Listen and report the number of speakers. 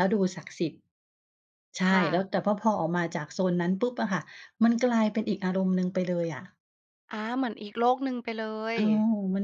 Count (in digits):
2